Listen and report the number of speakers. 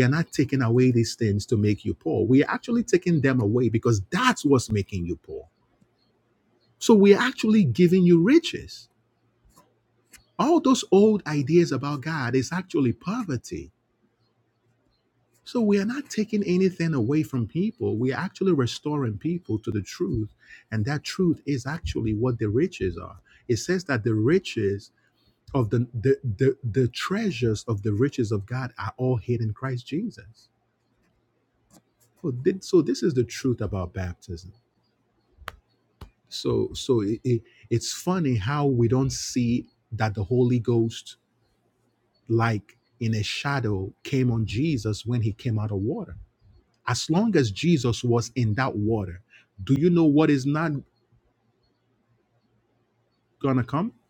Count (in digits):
1